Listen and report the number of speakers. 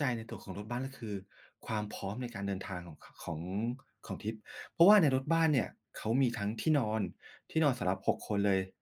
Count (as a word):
one